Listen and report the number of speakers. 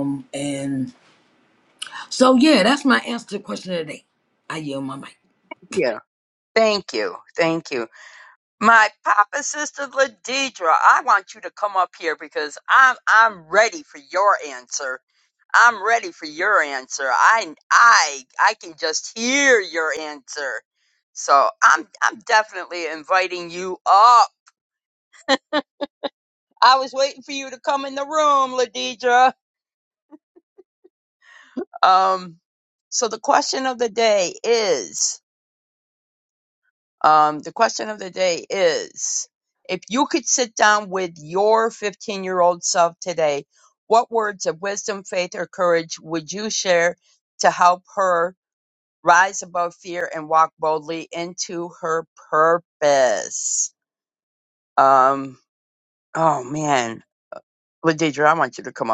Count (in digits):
2